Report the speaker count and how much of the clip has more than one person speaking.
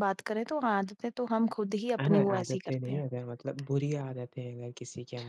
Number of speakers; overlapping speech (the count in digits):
2, about 19%